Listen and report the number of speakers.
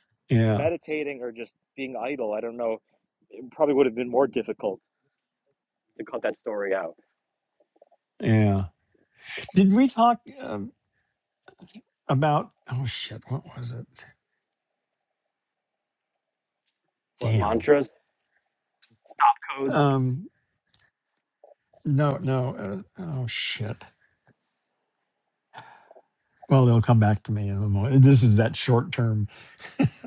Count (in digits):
2